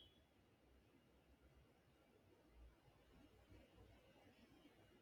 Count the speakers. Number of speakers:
0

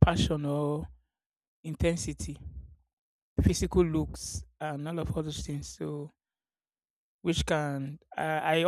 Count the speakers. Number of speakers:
1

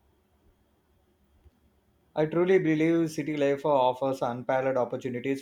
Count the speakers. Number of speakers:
1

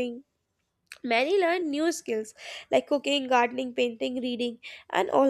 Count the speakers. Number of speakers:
1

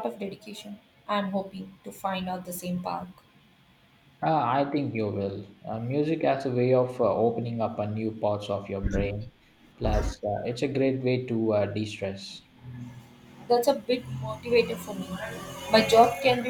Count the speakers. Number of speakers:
2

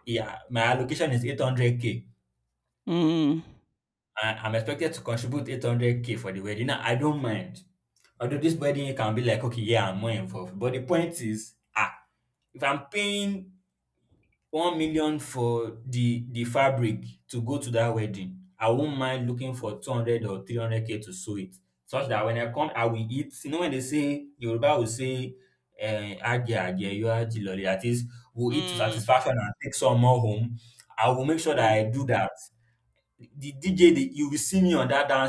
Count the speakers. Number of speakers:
2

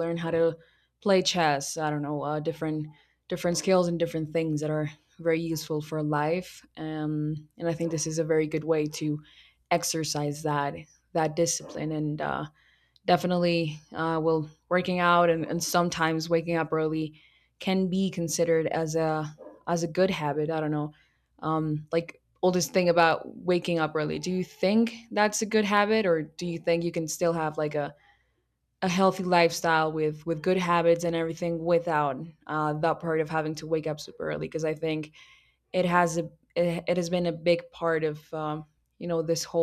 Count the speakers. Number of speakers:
1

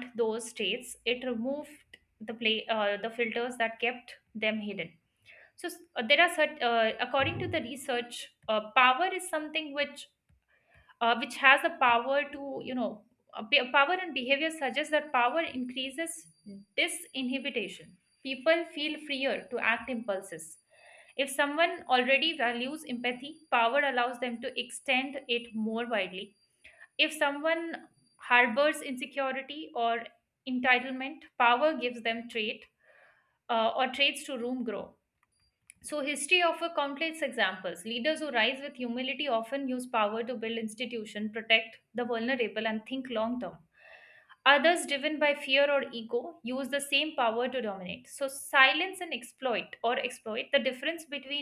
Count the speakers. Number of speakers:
1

